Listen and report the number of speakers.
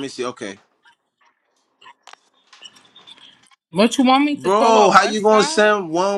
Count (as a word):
two